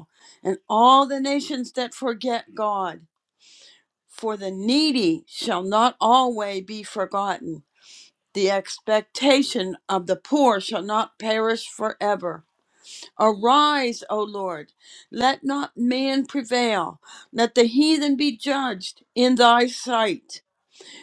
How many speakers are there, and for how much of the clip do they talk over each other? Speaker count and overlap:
1, no overlap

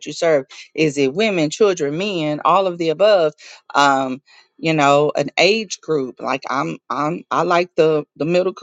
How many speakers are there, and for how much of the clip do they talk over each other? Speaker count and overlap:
1, no overlap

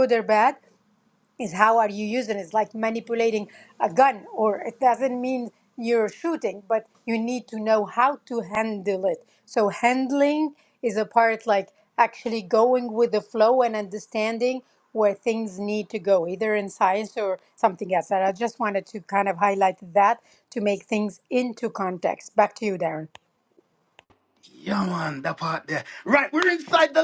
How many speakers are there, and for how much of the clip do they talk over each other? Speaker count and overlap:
2, no overlap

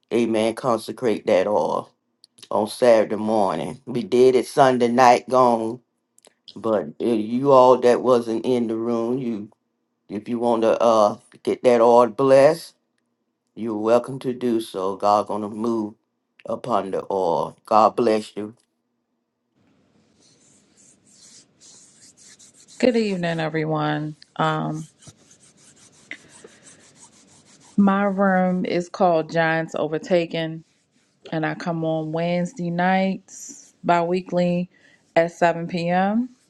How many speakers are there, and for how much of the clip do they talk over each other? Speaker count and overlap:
2, no overlap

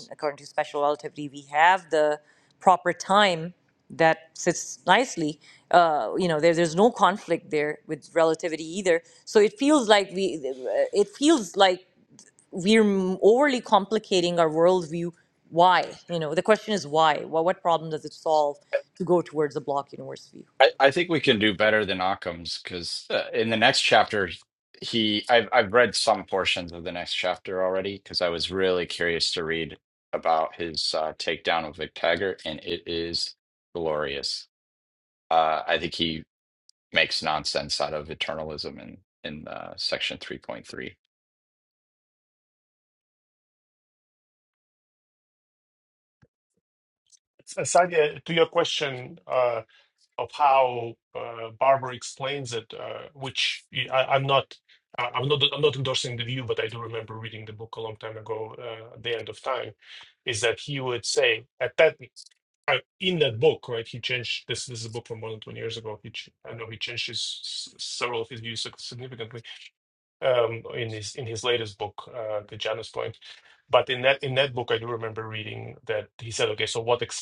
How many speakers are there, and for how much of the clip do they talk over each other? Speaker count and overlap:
3, no overlap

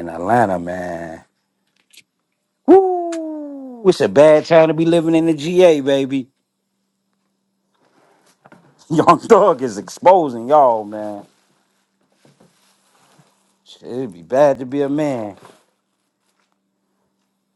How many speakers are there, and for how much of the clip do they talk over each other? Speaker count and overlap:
1, no overlap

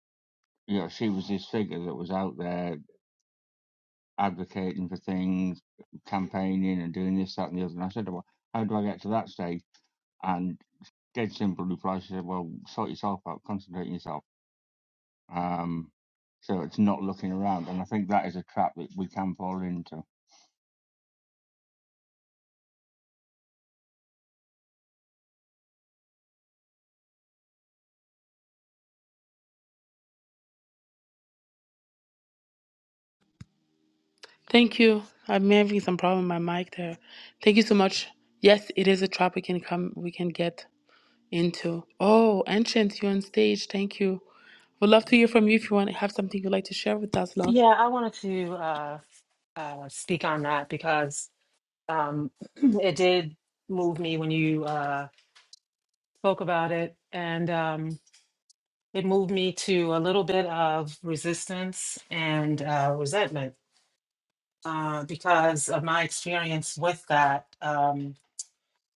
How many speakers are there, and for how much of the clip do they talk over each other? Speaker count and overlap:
3, under 1%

